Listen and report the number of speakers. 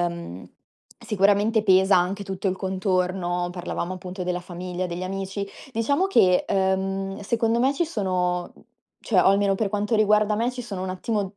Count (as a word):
one